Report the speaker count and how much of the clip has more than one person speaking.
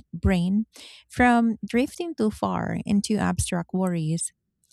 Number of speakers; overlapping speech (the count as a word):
one, no overlap